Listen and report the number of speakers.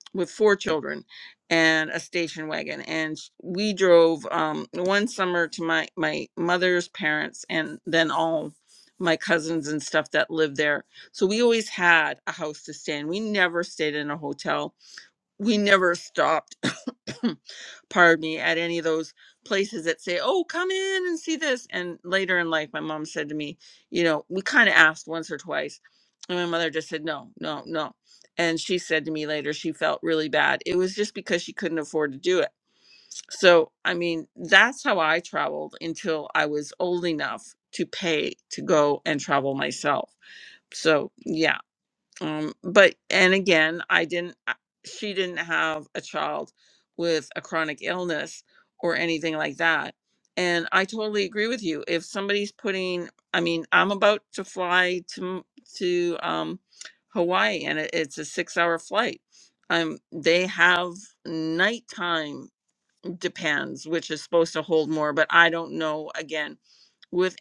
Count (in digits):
1